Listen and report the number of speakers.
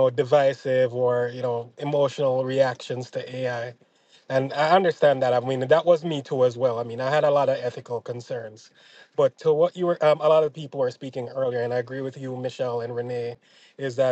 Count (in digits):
1